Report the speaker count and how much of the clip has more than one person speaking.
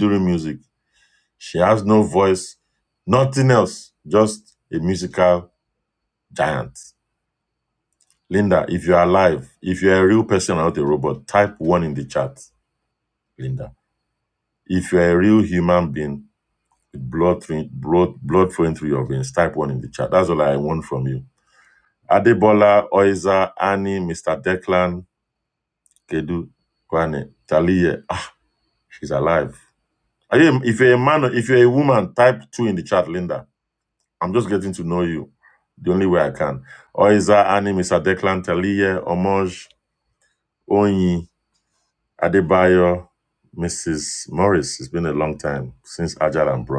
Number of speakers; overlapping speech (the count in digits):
1, no overlap